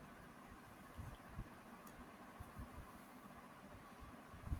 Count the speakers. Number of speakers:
0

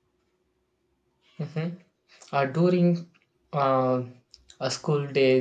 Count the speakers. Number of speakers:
1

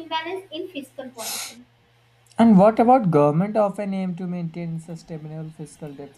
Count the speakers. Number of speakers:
2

